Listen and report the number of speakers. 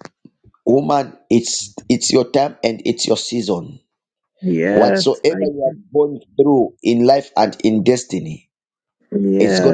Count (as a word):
two